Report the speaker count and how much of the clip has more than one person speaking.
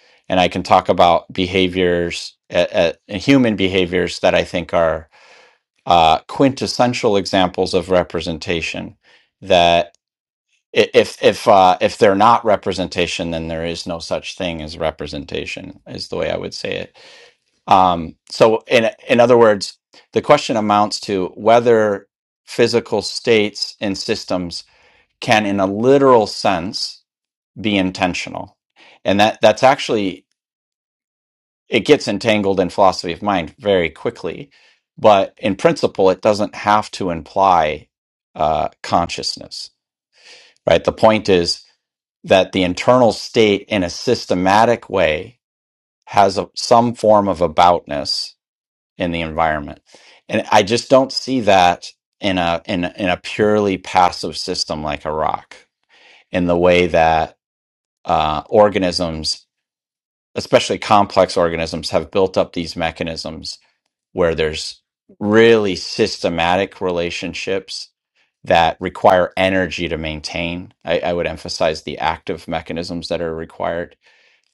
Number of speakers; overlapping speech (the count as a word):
one, no overlap